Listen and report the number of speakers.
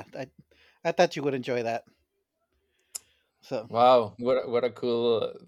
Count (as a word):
two